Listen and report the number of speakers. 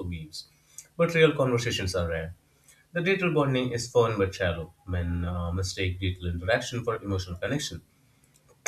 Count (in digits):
1